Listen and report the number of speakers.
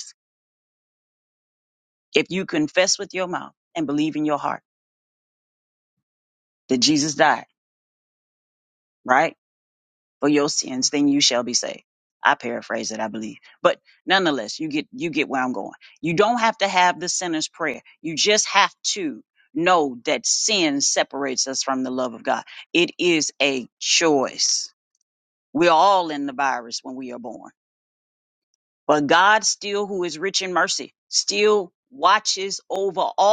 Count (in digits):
1